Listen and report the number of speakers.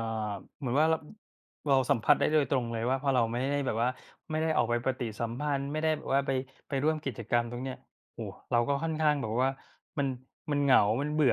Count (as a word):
one